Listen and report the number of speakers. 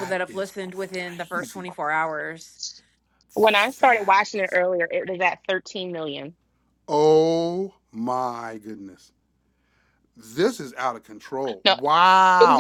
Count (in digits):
3